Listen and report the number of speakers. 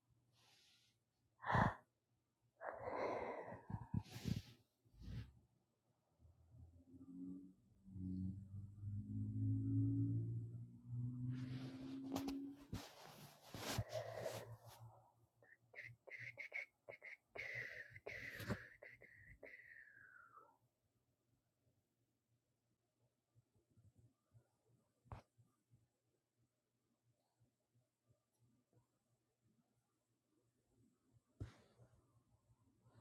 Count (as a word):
zero